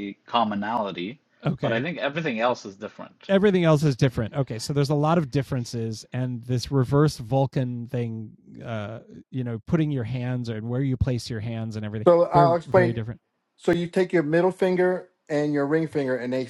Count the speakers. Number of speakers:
3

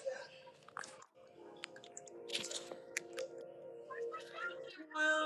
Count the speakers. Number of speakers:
0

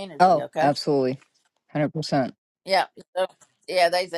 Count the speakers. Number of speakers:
2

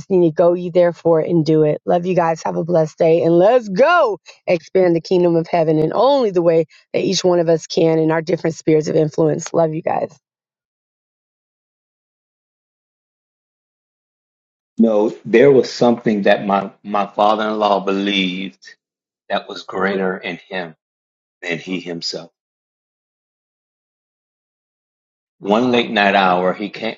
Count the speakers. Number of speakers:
2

